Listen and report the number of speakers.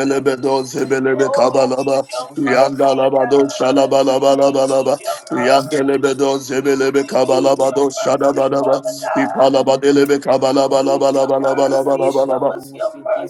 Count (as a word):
two